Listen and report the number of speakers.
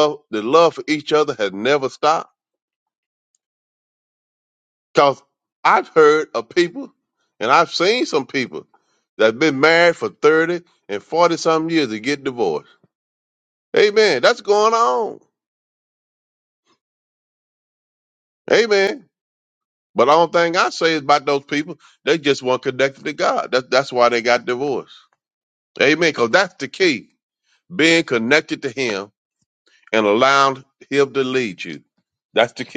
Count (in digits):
1